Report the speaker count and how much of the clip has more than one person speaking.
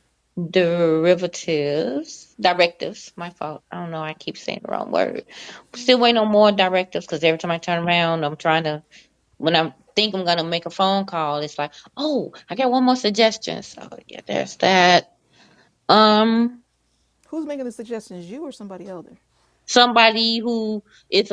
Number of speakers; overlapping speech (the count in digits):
2, no overlap